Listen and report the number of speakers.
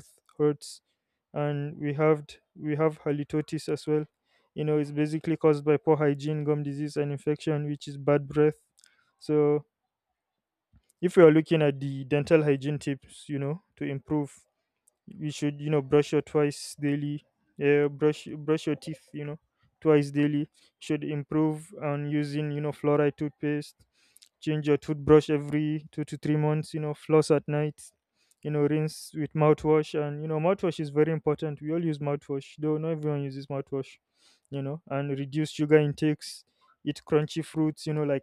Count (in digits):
1